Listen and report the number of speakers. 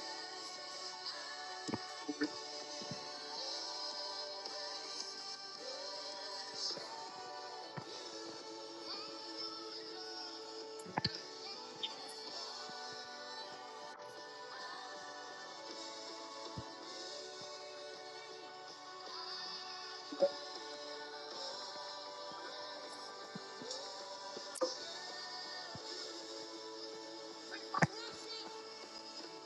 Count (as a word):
zero